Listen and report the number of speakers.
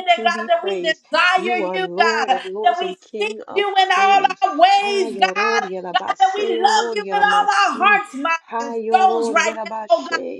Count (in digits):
2